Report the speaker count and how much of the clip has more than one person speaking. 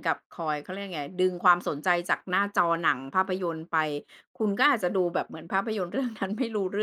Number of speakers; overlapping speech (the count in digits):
1, no overlap